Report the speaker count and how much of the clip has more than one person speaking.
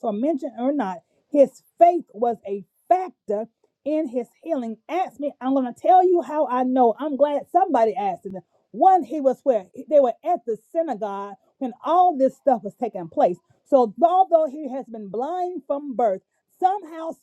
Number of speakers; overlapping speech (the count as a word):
one, no overlap